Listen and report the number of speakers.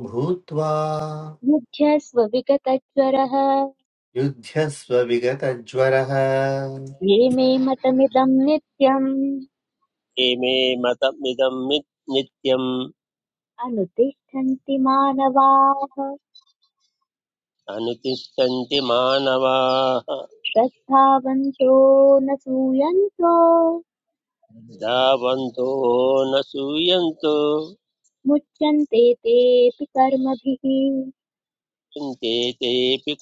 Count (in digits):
3